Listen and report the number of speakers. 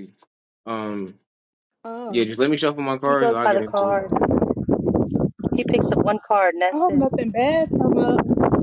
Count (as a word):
three